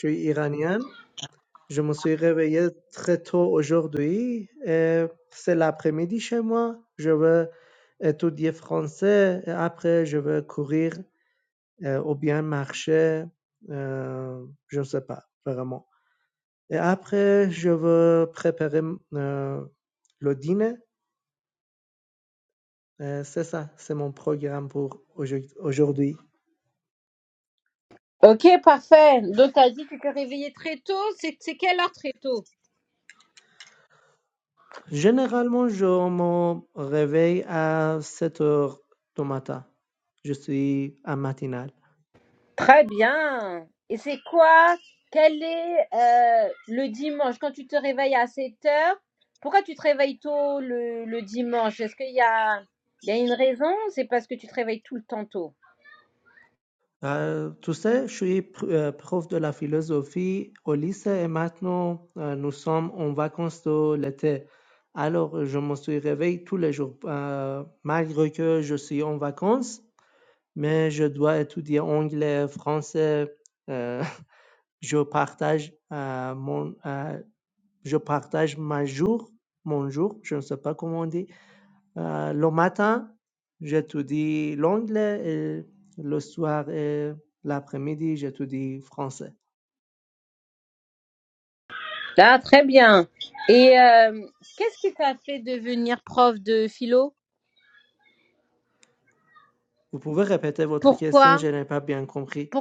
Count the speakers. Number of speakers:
two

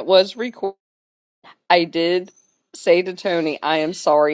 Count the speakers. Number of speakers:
one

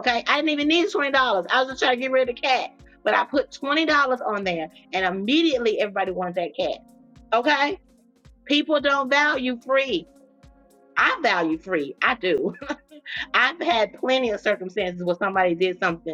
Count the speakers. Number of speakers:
one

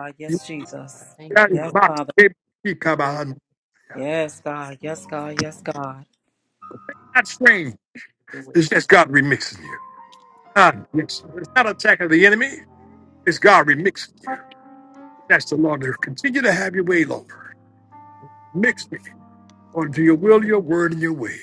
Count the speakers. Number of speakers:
three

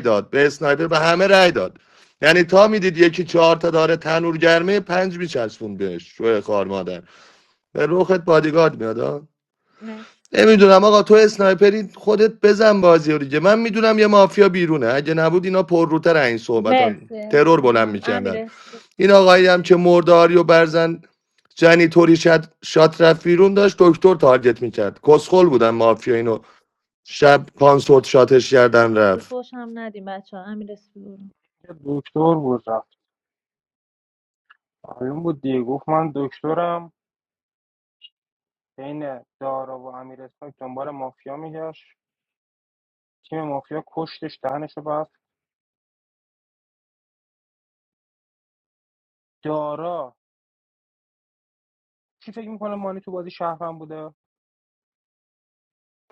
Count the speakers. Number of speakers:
three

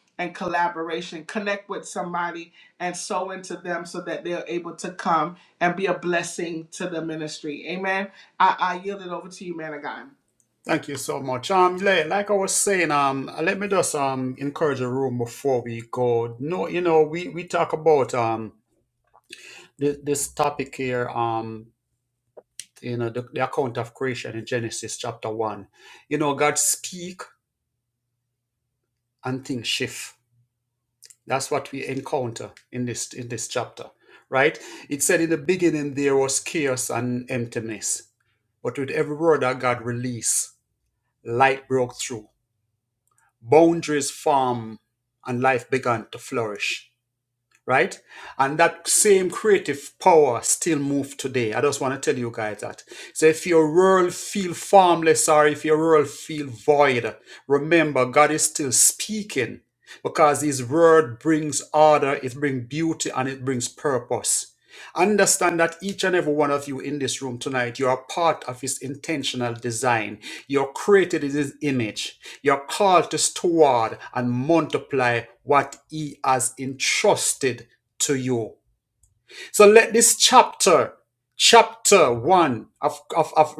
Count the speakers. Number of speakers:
two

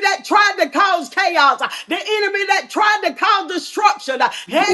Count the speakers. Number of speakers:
one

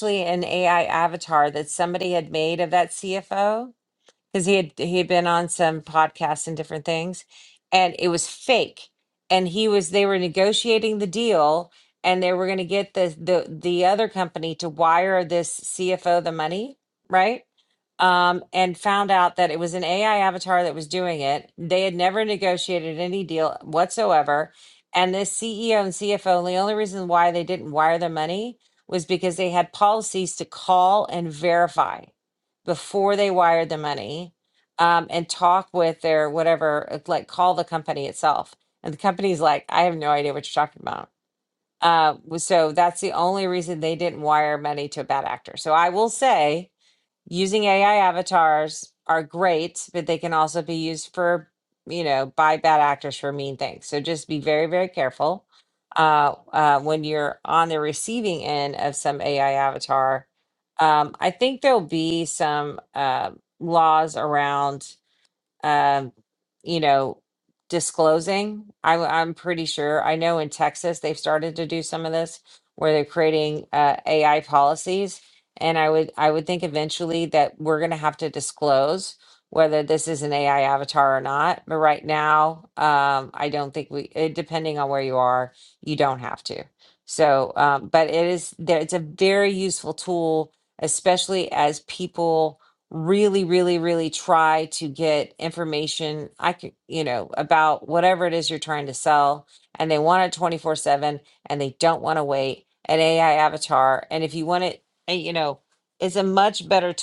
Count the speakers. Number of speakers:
one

